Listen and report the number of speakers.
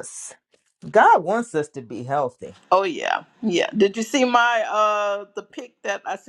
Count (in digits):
2